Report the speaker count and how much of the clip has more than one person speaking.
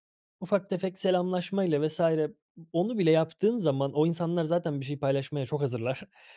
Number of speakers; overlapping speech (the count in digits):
1, no overlap